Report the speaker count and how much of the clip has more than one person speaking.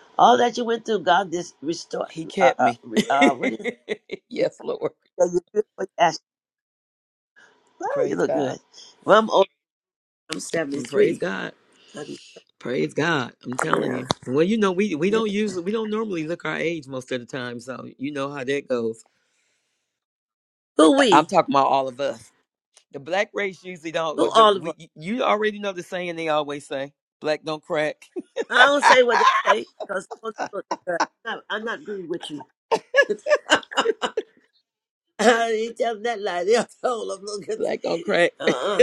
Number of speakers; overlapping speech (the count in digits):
2, about 8%